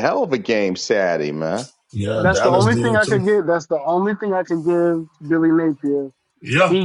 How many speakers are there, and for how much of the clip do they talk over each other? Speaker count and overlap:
three, about 16%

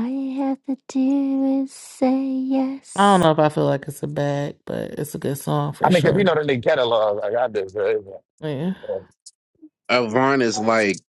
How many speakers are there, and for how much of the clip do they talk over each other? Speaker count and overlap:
four, about 4%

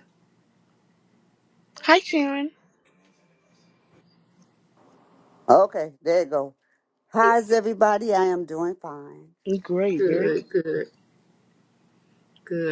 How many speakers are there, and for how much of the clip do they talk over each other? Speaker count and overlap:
three, about 3%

